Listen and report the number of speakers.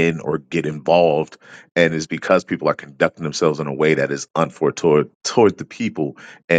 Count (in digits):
1